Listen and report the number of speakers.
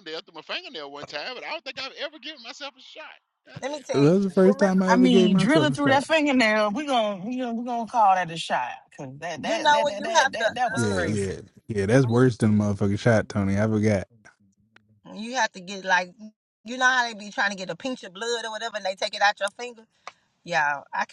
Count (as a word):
four